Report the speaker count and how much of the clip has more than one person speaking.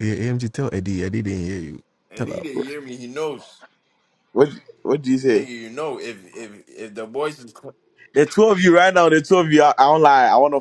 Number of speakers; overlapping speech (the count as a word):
three, about 5%